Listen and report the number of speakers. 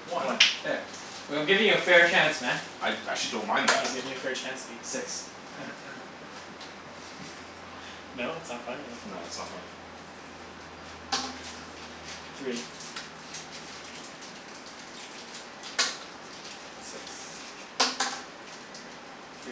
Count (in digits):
3